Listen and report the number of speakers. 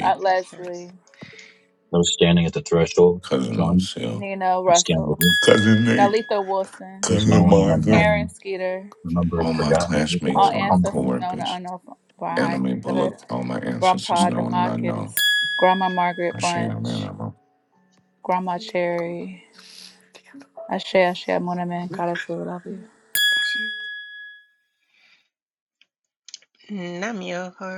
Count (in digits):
4